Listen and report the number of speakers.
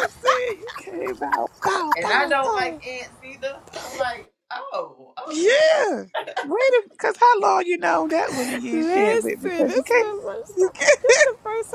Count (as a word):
three